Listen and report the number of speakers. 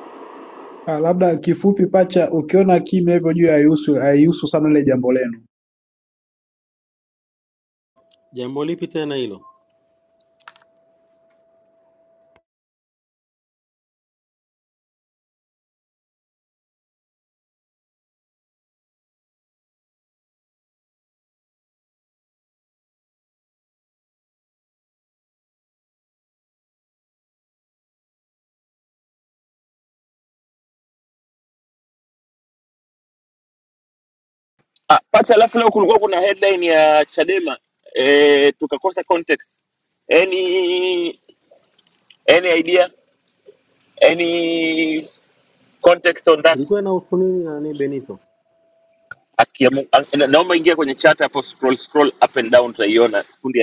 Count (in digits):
3